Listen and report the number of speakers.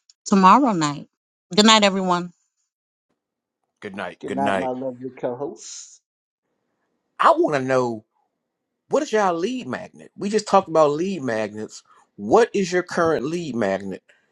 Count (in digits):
3